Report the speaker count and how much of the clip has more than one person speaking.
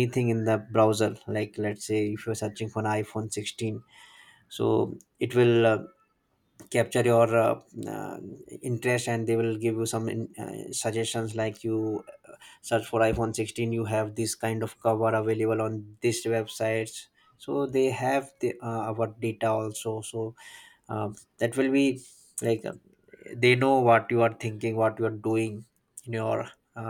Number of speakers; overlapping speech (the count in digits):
1, no overlap